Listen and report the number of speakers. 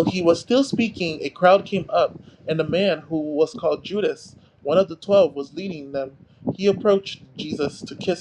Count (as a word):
one